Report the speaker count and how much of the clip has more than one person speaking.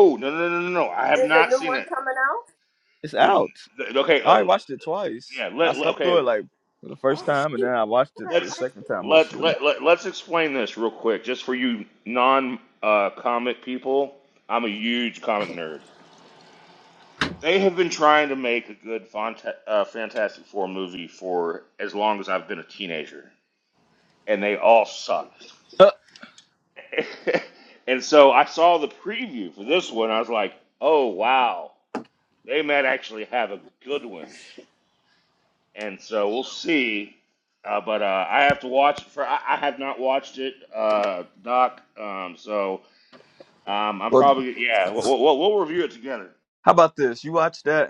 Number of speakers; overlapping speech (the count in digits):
3, about 7%